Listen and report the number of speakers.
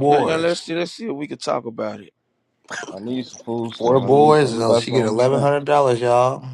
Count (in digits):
3